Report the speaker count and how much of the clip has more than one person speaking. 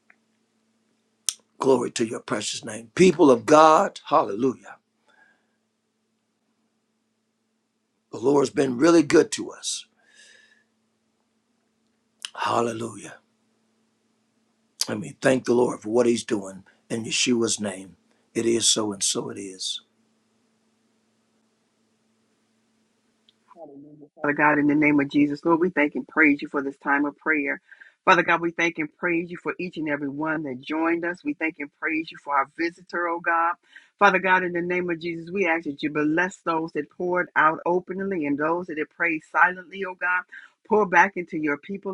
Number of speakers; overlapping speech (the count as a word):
two, no overlap